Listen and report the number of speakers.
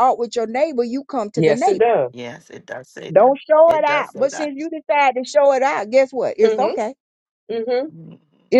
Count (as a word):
three